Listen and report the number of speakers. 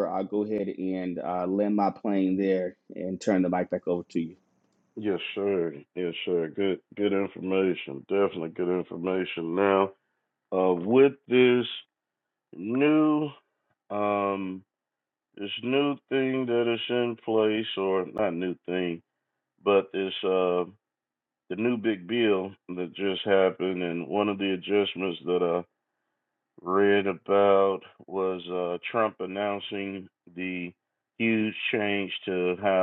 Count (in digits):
2